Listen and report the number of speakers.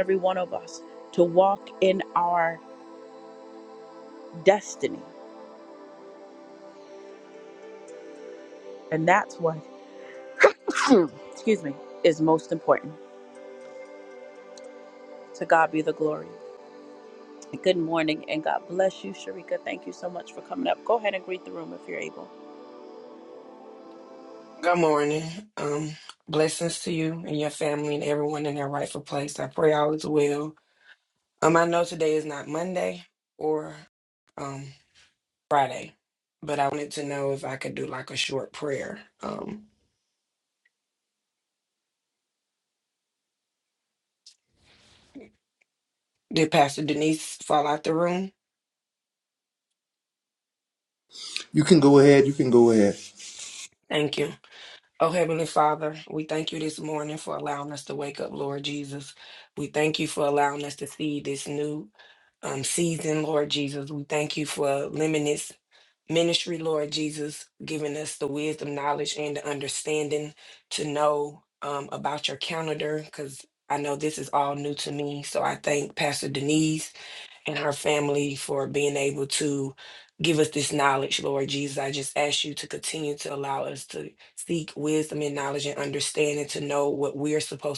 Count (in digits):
3